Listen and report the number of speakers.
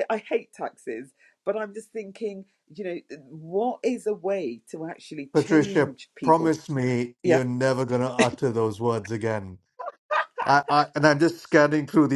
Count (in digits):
2